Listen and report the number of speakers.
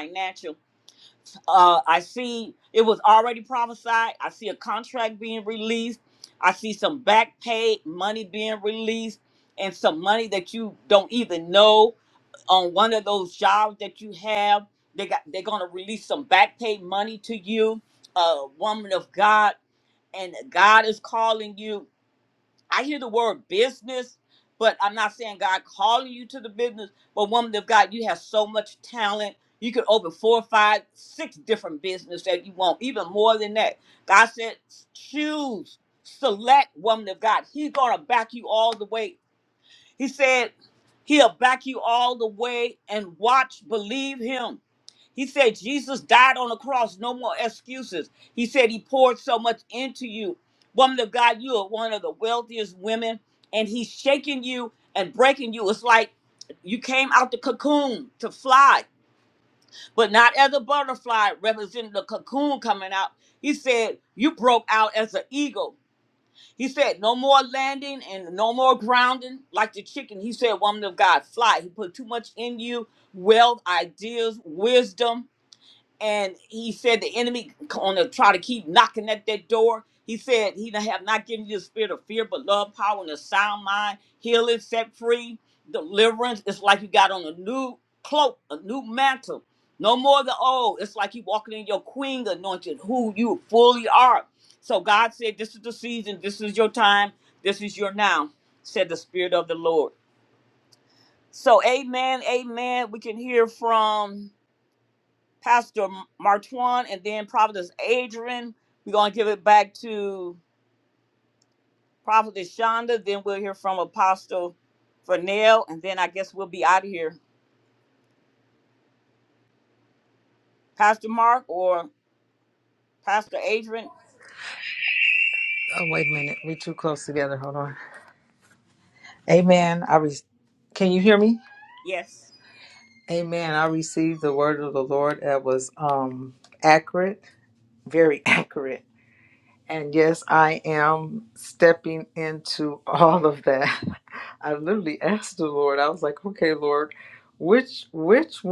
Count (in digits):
2